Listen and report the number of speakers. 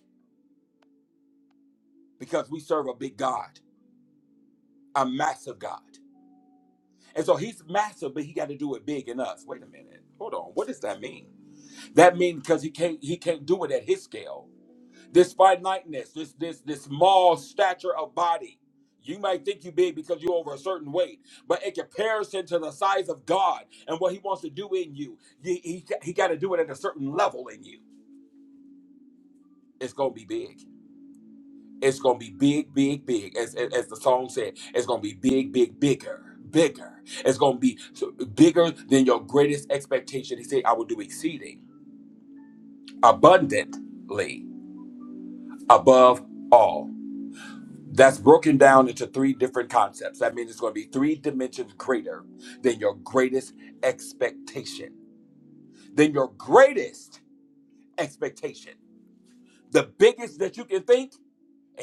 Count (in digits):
1